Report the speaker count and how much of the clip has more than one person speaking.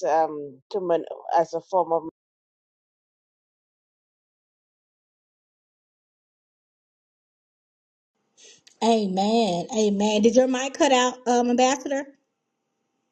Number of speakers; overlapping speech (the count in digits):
2, no overlap